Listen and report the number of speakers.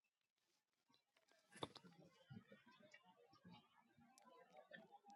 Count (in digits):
0